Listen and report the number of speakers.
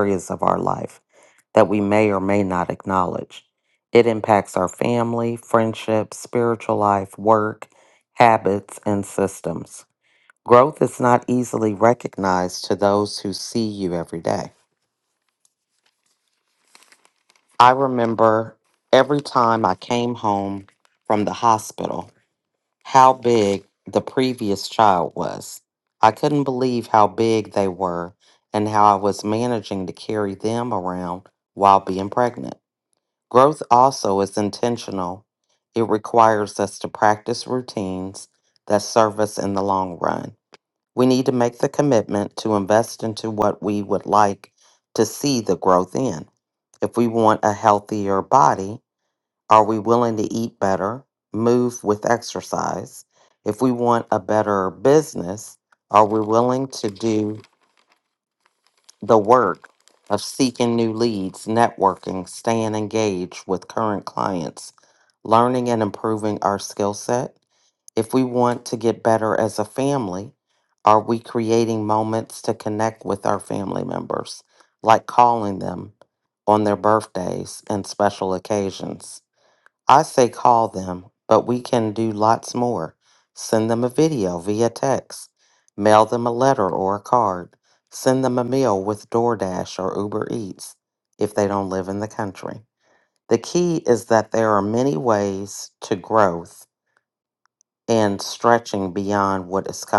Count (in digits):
1